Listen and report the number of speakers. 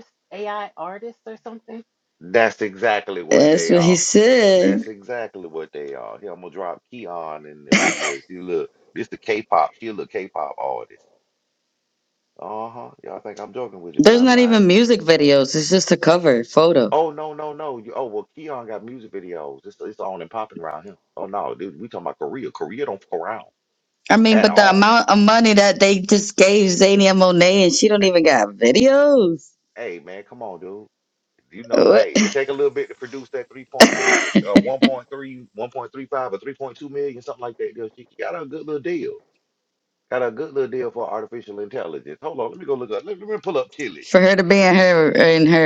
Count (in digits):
3